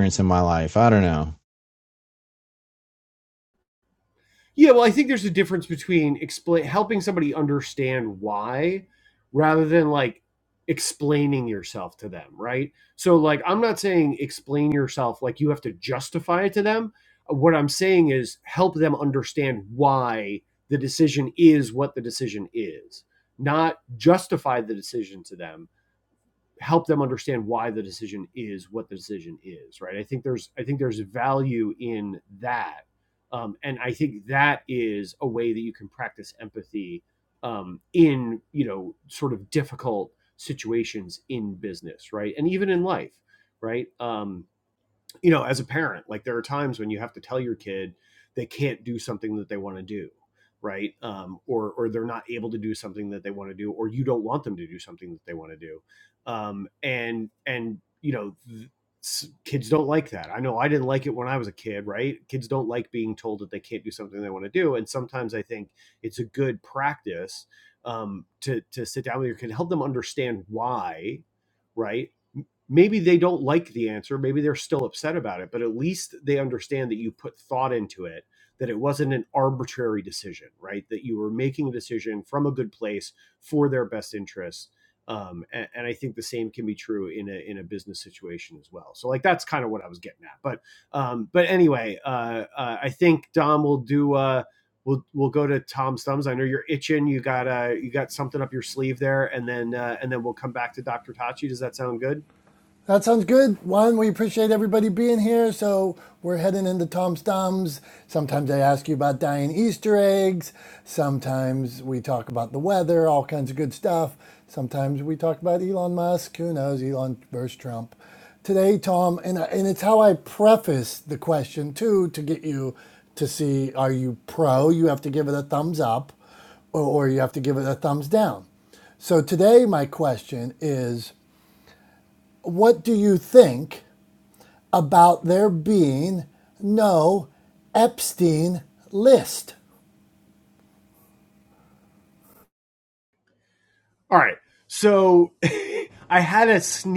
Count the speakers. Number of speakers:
three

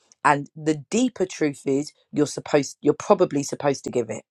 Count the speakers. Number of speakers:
one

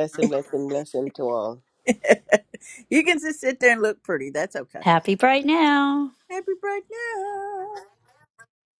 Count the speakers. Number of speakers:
three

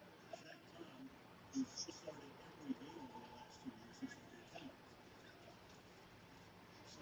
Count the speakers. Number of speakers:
zero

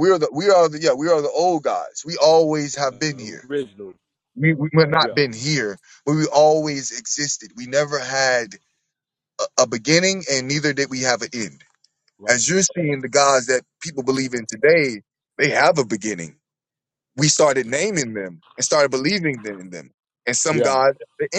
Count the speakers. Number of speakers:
two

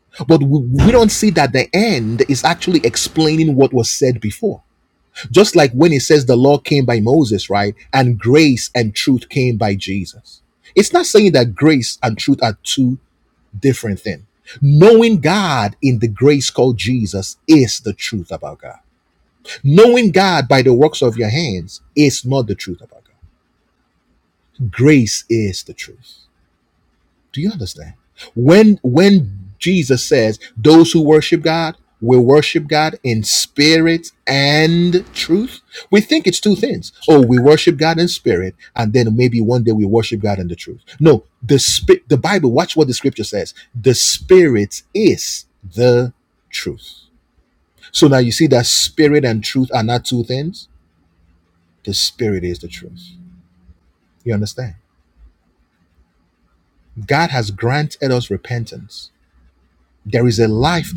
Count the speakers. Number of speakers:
one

